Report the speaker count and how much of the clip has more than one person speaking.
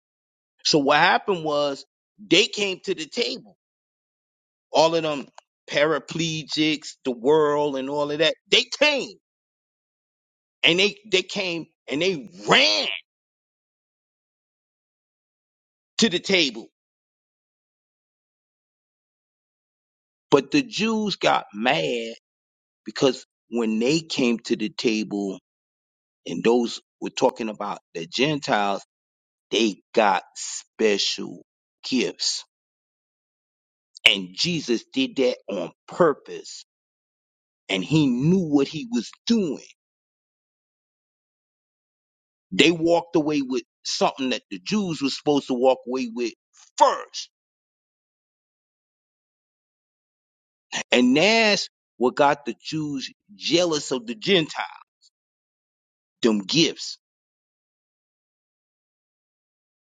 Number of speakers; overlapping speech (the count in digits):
1, no overlap